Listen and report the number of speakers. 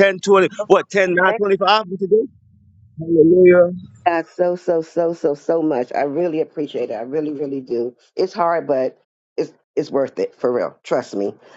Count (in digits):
2